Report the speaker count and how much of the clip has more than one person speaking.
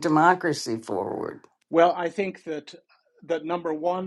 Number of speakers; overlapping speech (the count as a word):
two, no overlap